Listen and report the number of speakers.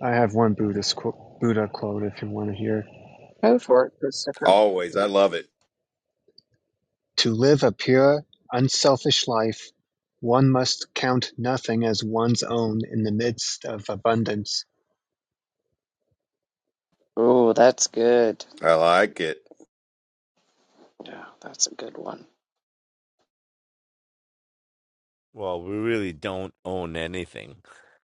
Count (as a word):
four